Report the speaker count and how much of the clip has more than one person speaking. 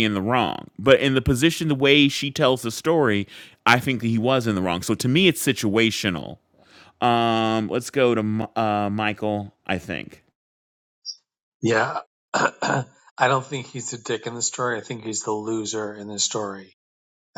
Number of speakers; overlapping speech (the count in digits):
2, no overlap